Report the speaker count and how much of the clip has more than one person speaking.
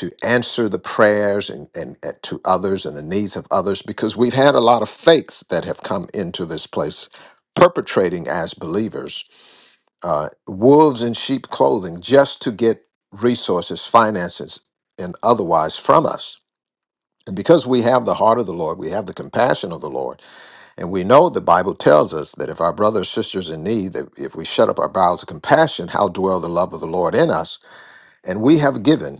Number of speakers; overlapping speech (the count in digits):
1, no overlap